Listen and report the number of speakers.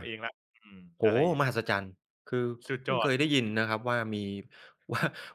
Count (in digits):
2